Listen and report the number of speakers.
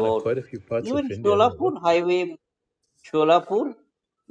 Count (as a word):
two